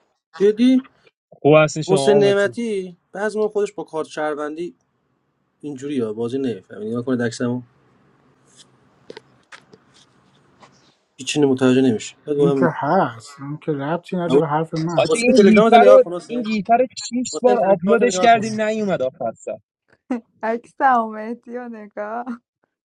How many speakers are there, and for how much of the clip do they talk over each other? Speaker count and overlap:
four, about 15%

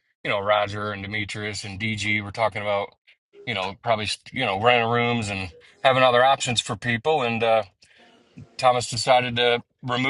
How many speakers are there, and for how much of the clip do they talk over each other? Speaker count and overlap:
one, no overlap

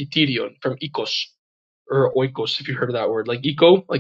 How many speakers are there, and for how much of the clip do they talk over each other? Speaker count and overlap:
one, no overlap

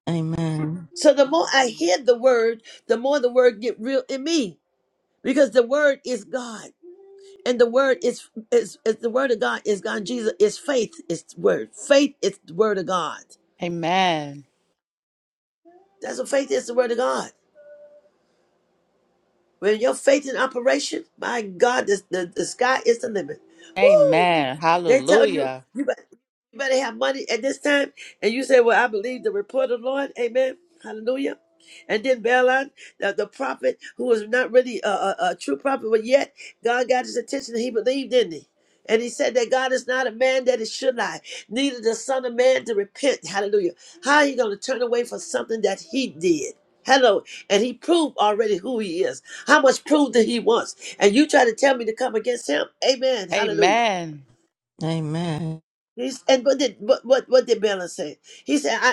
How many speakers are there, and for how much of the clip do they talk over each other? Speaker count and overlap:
three, about 3%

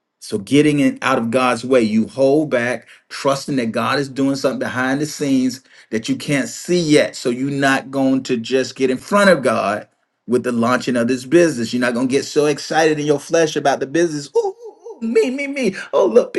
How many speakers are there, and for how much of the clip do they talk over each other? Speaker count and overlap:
one, no overlap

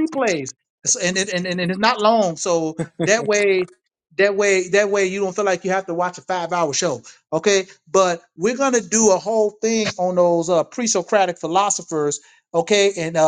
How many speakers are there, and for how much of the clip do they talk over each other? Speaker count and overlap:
one, no overlap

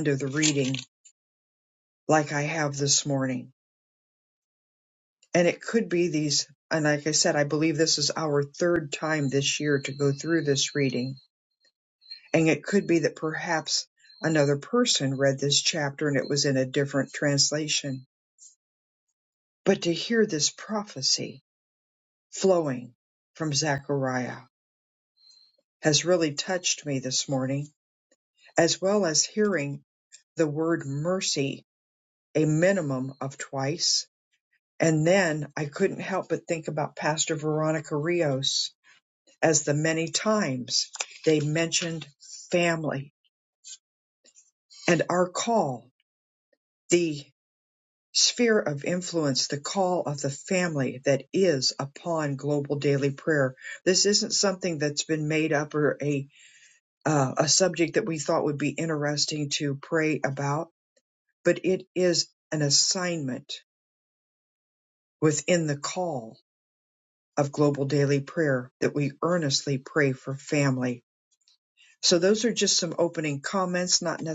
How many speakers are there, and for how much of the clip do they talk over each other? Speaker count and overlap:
one, no overlap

